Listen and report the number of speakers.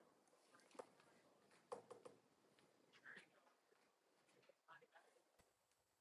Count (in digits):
0